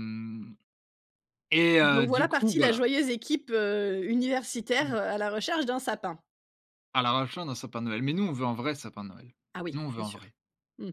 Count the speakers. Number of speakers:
2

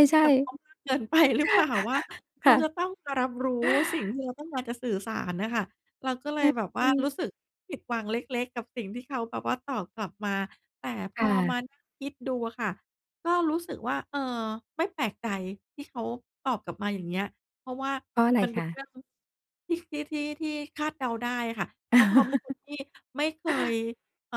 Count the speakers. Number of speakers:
2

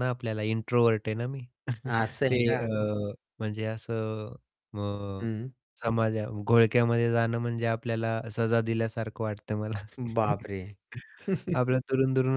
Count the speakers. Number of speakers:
2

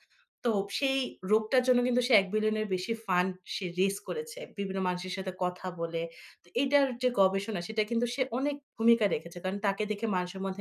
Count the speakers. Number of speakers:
1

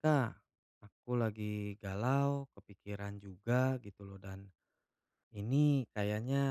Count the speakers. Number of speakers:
1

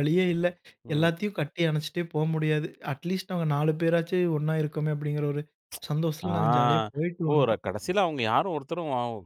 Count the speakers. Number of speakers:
2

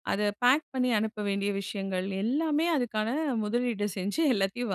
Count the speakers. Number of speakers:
1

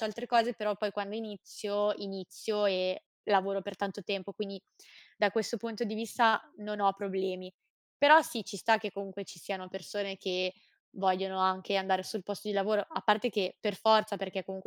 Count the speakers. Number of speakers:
1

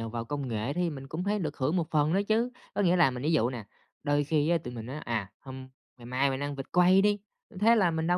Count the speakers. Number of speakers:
1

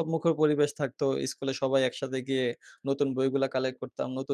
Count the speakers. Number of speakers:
1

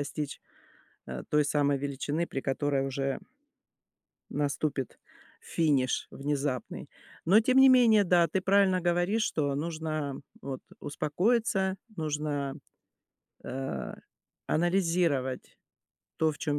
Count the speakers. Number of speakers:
1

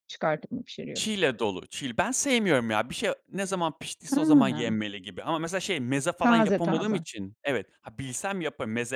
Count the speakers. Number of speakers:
2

